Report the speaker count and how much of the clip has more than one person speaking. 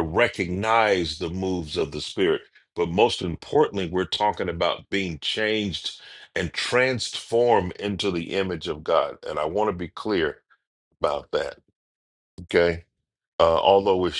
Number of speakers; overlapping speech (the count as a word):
one, no overlap